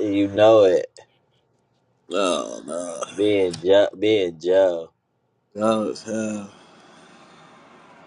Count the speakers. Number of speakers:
2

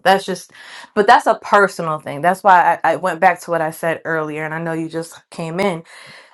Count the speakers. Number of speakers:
1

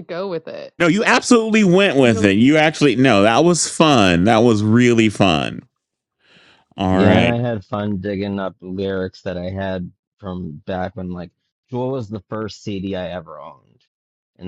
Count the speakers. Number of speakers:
3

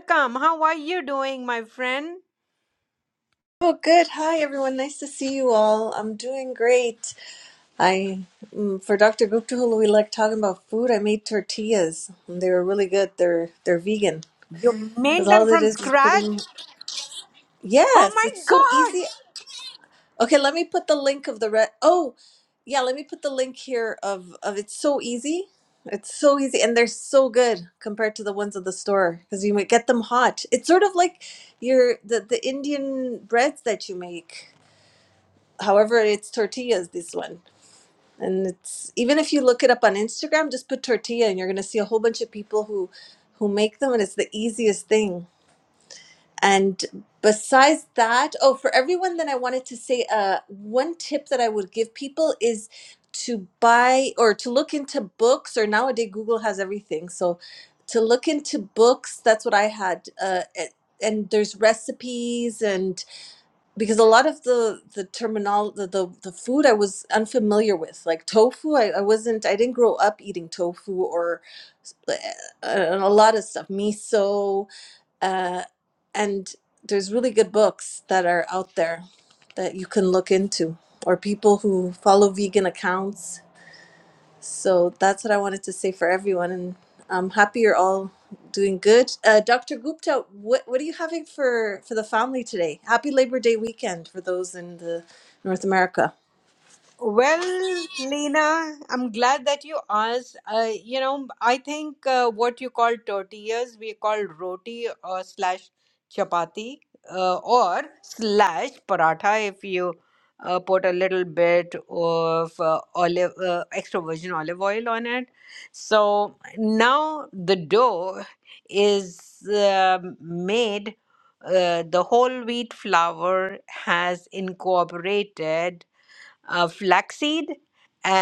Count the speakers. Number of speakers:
2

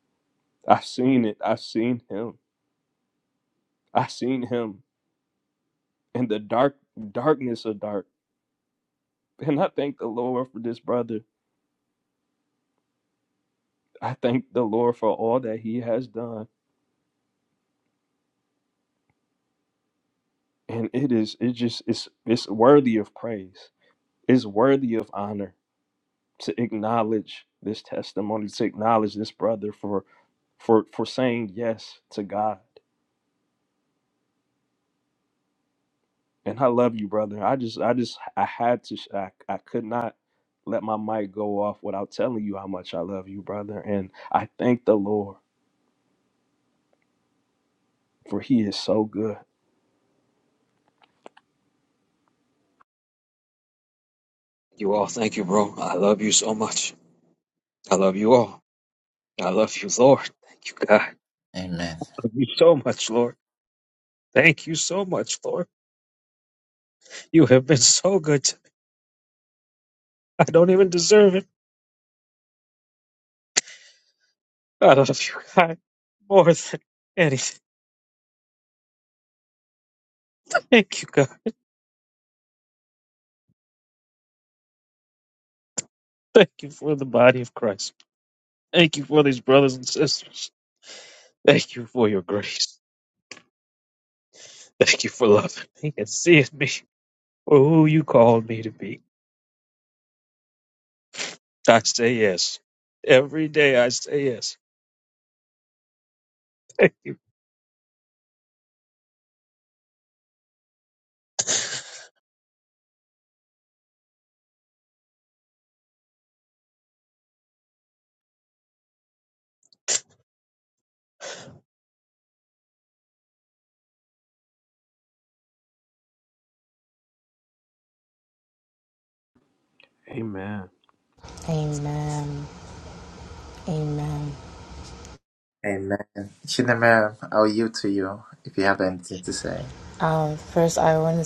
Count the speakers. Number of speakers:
4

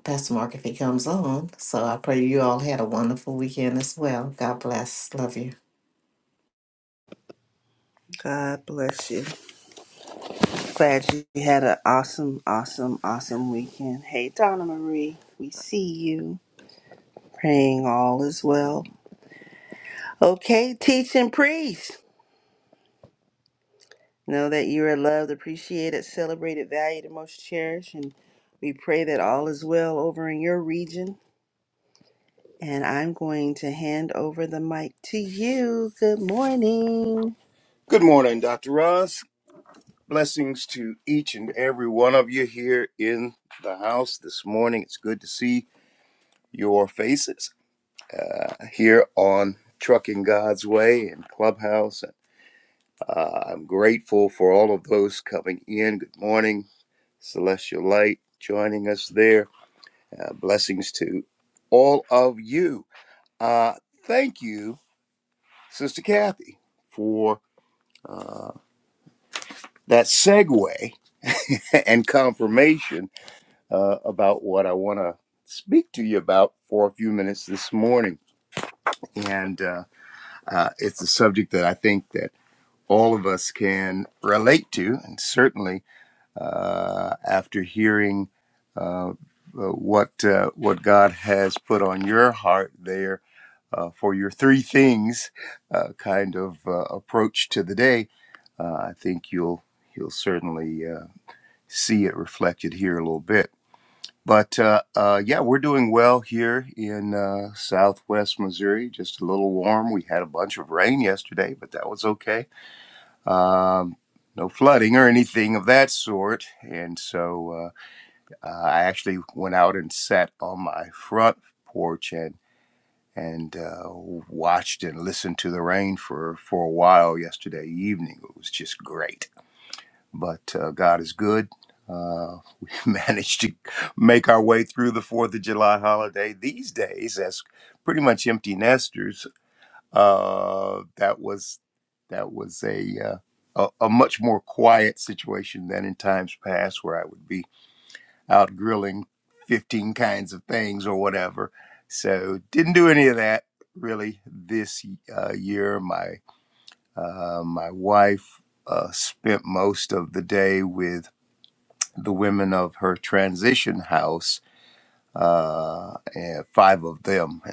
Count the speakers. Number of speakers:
3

